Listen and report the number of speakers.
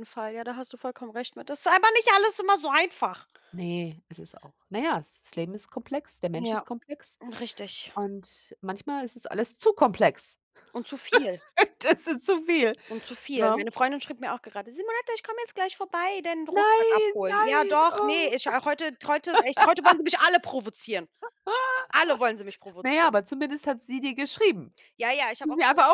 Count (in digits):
2